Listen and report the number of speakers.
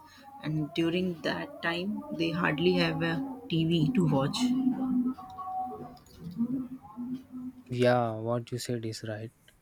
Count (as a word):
two